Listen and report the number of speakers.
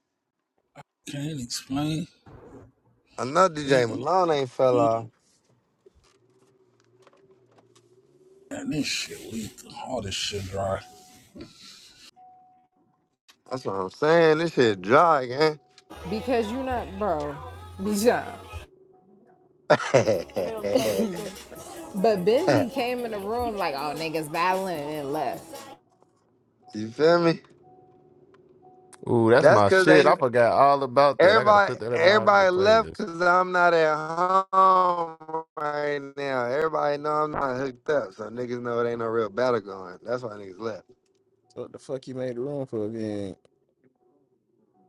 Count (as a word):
five